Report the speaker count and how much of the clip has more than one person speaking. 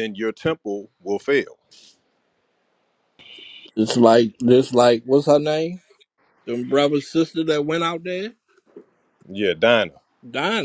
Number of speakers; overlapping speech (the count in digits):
2, no overlap